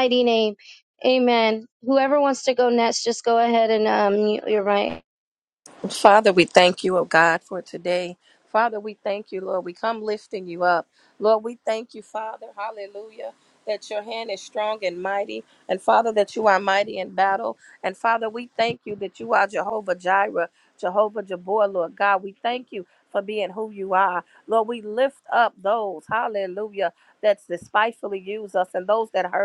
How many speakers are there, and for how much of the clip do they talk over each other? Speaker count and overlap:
two, no overlap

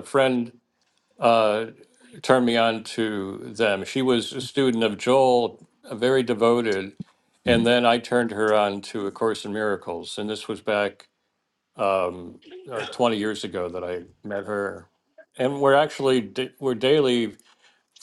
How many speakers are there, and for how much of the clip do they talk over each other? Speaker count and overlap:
one, no overlap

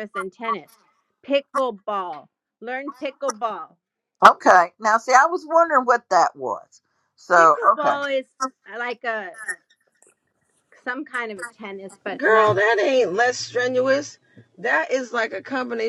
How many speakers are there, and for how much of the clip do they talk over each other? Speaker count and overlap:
three, about 7%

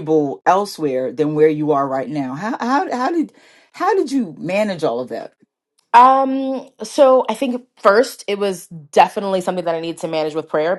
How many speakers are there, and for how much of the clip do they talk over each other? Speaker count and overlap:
two, no overlap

